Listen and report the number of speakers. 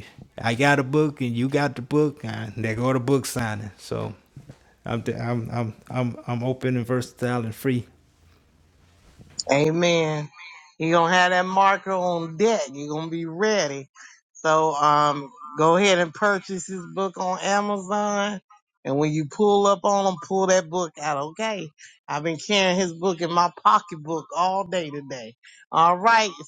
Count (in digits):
2